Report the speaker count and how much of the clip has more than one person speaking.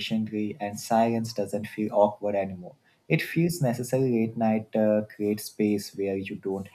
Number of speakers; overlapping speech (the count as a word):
one, no overlap